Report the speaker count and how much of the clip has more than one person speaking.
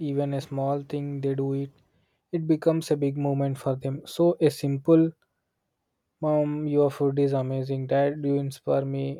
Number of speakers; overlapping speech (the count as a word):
one, no overlap